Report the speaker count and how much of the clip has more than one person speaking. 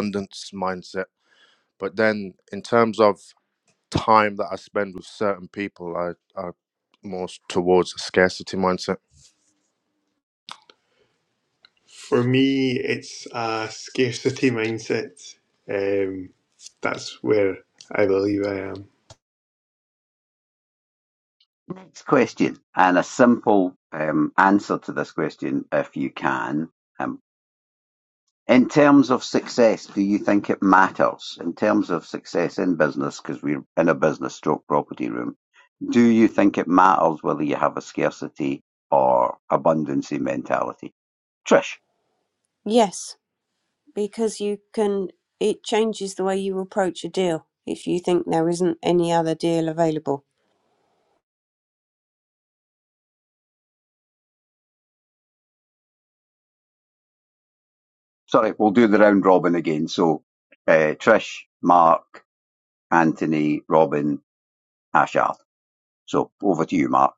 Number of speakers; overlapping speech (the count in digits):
4, no overlap